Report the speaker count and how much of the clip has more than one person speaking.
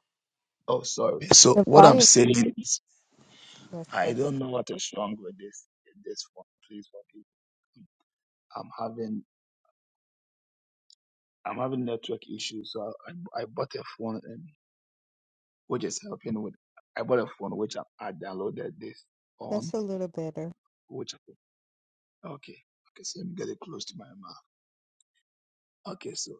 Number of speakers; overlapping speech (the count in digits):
2, about 4%